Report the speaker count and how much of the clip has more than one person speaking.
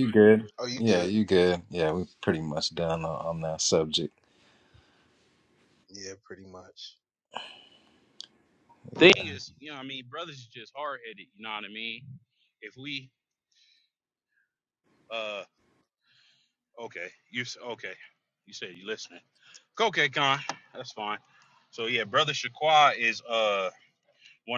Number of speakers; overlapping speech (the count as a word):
three, about 1%